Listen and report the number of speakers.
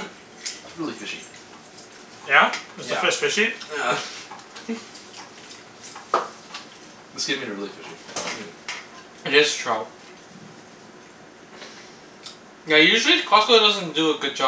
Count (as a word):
three